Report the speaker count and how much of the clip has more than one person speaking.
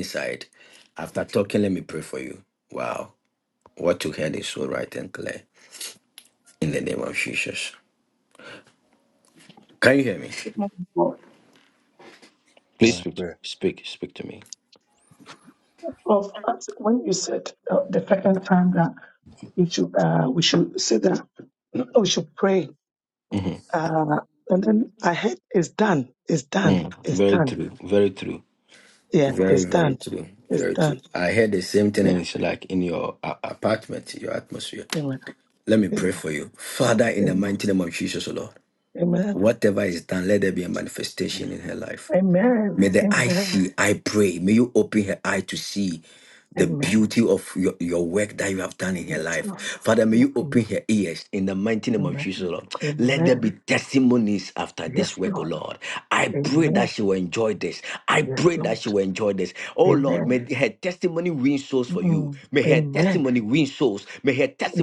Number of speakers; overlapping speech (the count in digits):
2, about 16%